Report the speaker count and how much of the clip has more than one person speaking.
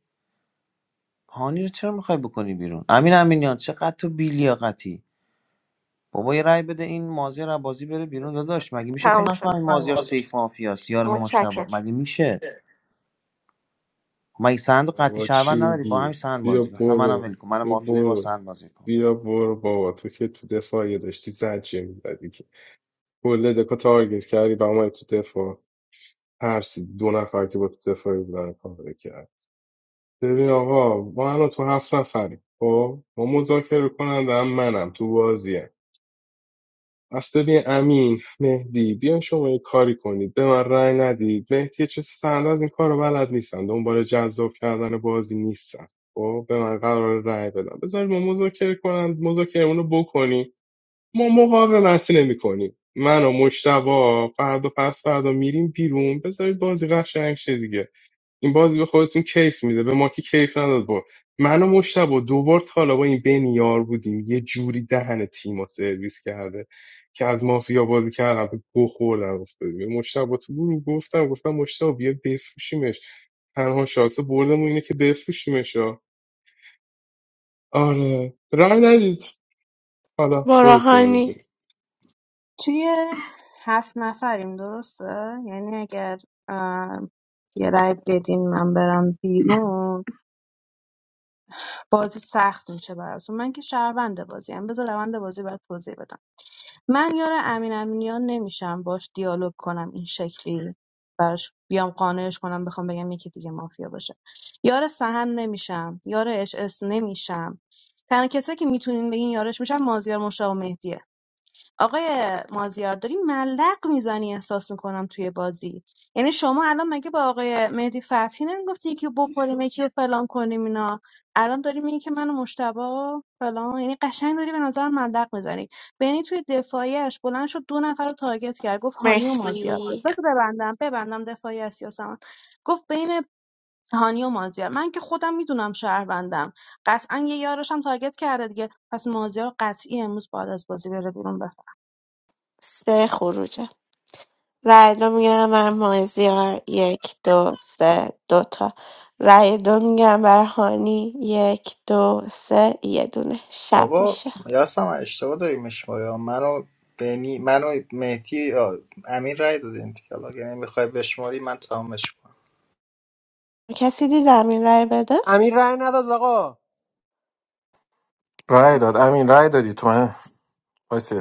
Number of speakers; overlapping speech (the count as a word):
seven, about 4%